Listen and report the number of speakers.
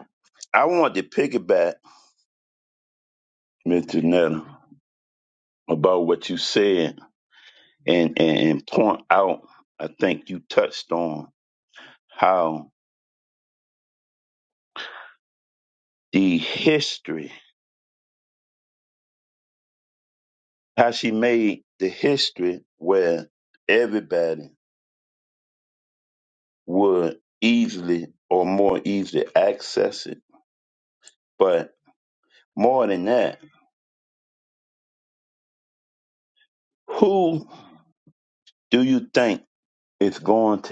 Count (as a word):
one